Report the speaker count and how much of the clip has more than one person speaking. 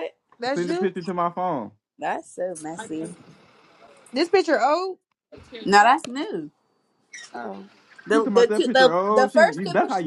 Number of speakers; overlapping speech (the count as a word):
three, about 23%